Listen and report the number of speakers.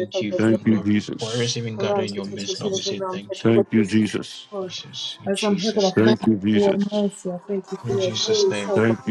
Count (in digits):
3